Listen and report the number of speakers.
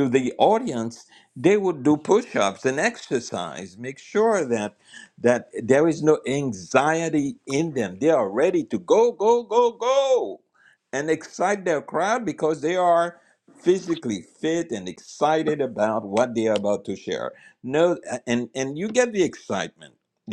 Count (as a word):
one